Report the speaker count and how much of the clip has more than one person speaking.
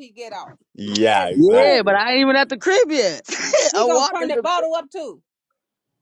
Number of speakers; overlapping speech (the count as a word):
three, about 27%